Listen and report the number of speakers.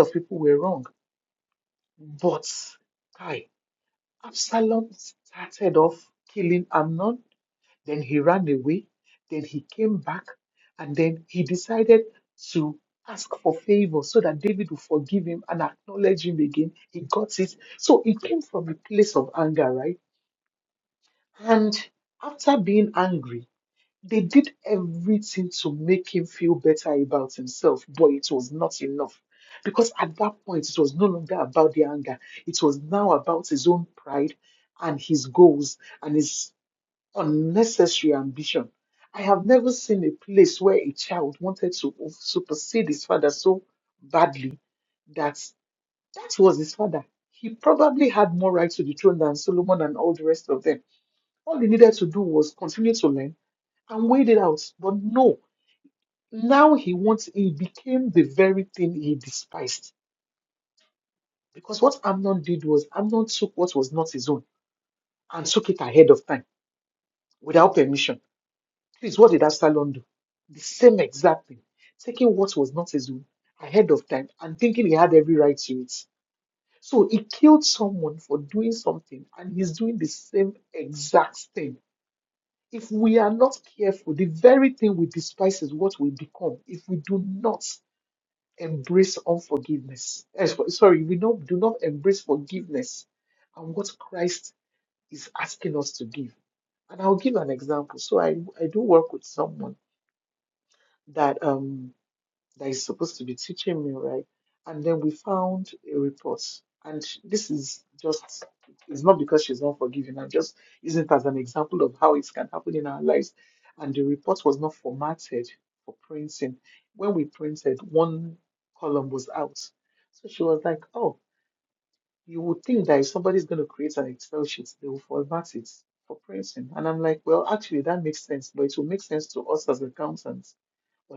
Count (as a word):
one